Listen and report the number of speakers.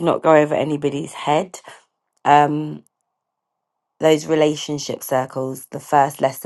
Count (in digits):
1